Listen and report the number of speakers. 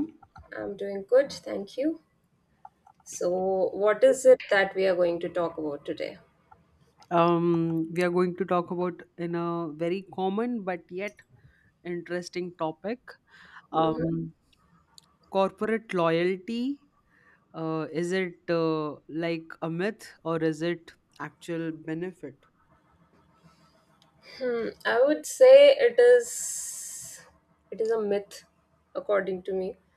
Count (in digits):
2